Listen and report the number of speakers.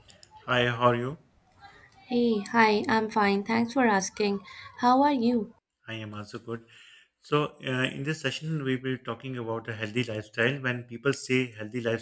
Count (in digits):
2